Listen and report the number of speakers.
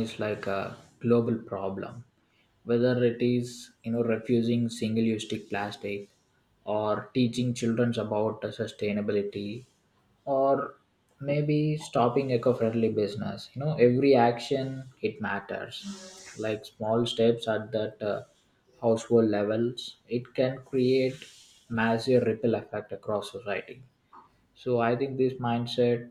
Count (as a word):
one